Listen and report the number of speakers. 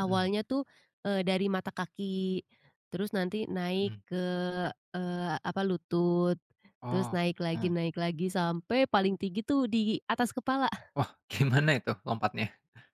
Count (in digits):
2